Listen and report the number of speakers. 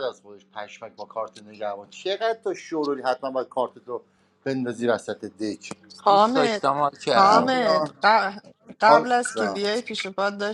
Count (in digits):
3